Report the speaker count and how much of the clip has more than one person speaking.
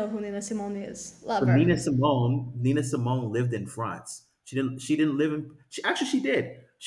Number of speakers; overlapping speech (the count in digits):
2, about 5%